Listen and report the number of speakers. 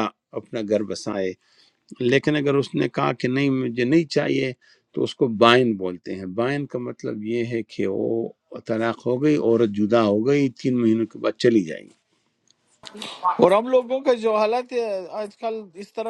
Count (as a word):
two